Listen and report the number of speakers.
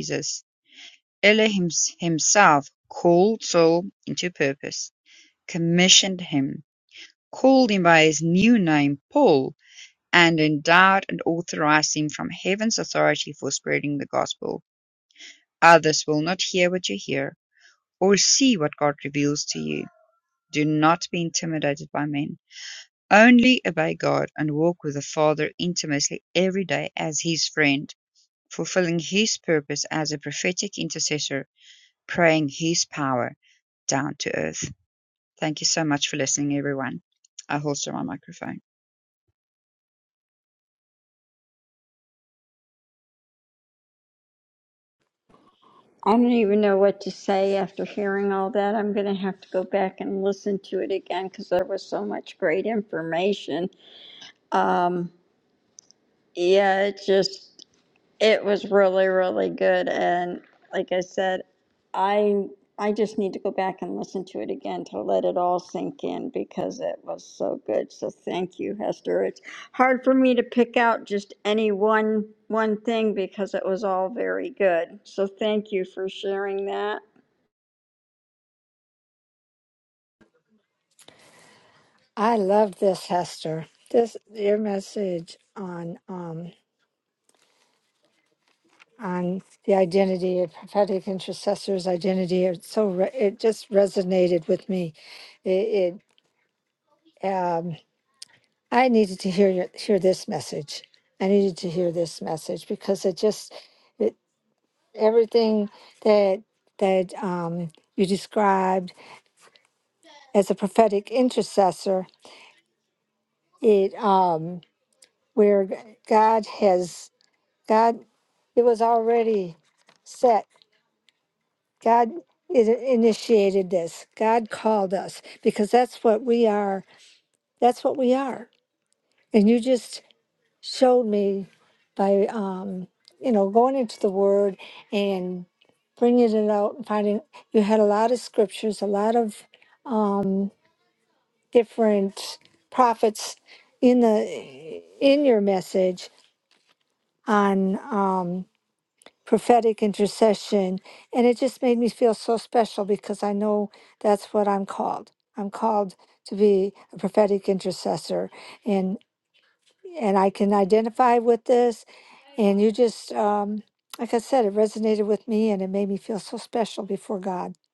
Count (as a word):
three